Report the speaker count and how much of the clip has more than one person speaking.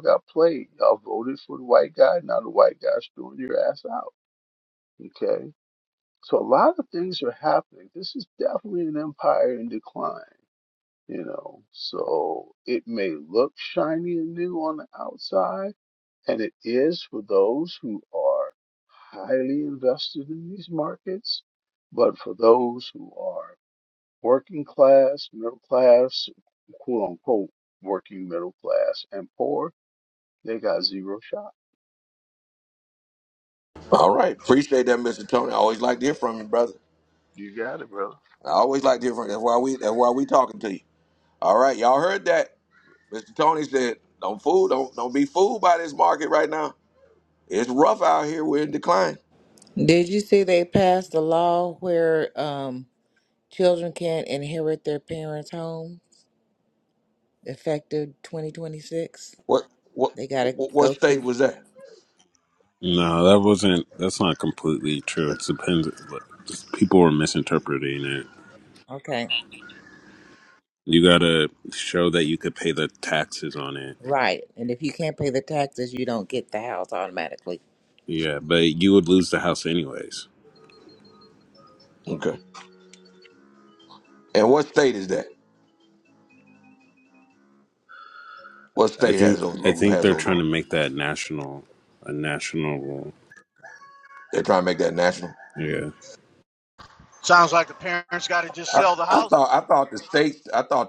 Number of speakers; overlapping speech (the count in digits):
5, about 3%